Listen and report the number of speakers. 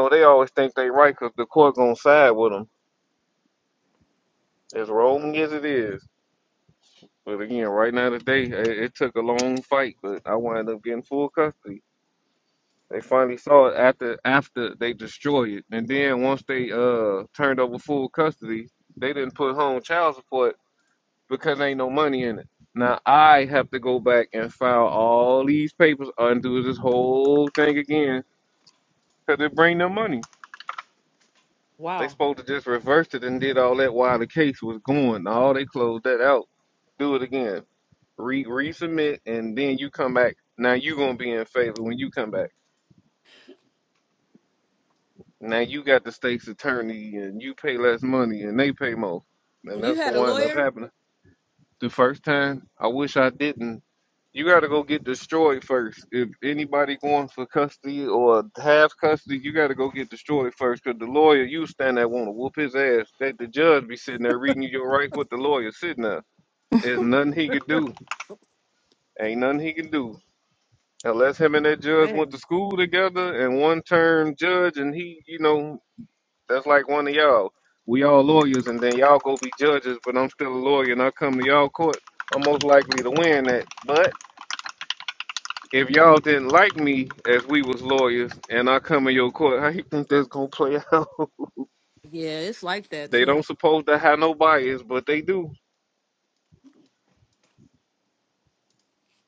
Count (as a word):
two